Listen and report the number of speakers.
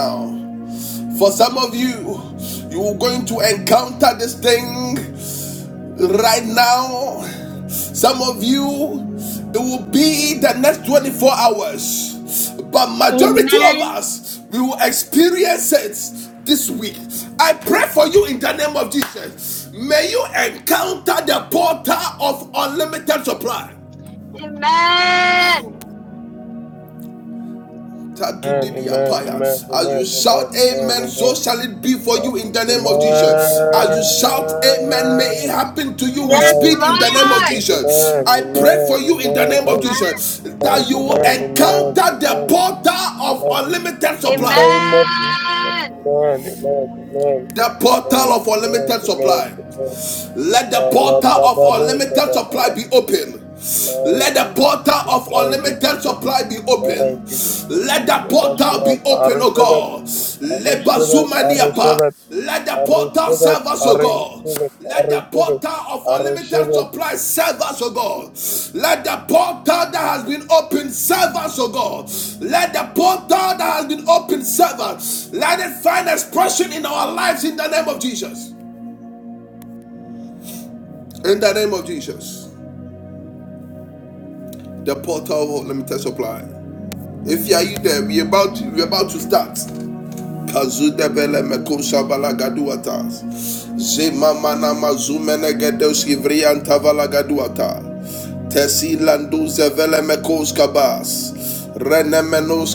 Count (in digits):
3